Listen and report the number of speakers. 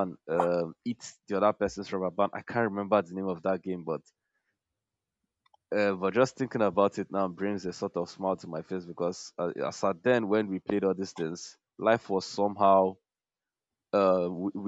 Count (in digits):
1